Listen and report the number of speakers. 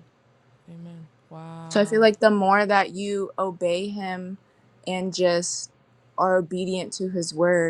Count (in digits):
2